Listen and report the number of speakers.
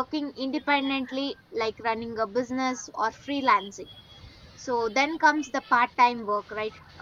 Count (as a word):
one